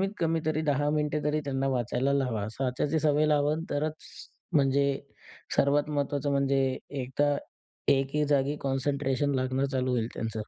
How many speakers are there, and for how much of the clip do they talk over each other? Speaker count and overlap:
one, no overlap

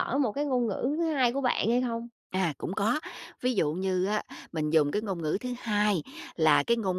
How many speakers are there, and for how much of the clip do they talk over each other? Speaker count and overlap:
two, no overlap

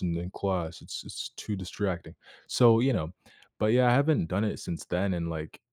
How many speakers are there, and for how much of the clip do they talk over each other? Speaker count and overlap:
one, no overlap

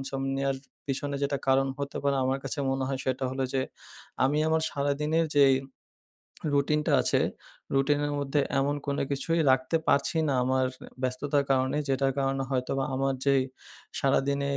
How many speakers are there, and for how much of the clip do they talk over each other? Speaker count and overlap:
one, no overlap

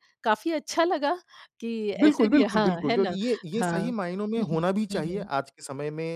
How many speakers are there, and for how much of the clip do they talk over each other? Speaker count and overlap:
two, about 40%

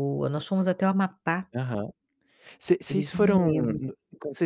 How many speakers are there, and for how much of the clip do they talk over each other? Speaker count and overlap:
two, about 19%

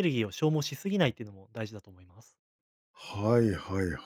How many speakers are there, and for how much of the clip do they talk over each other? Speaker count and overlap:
two, no overlap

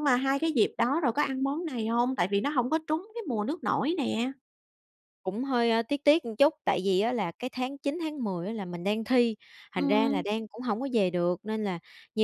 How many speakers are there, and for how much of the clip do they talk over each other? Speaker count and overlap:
two, about 4%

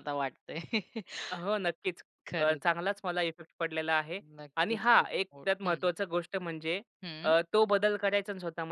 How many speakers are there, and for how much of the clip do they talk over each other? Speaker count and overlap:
two, about 14%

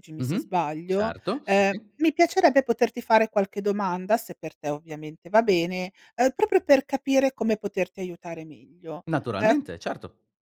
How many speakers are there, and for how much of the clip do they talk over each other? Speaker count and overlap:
two, about 7%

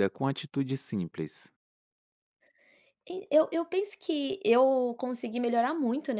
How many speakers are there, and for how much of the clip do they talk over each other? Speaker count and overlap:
two, no overlap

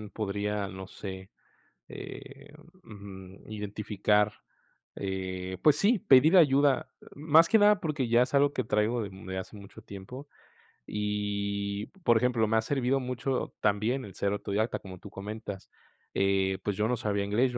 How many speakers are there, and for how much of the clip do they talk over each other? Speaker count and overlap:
one, no overlap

